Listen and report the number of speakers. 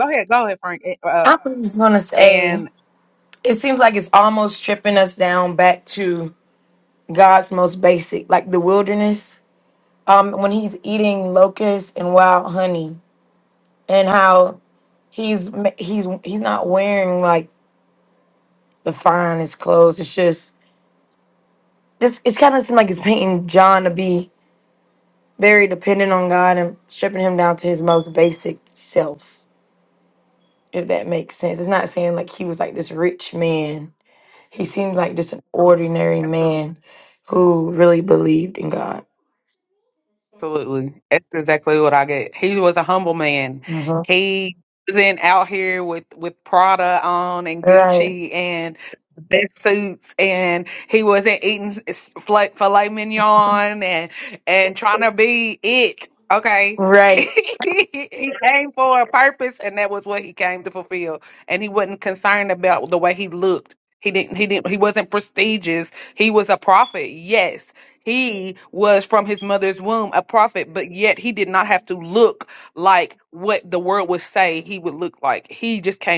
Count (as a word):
two